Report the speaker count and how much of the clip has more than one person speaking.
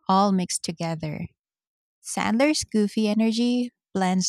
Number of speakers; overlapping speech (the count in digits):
1, no overlap